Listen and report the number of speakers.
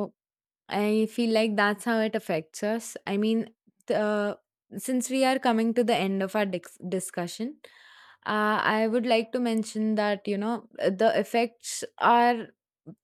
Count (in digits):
1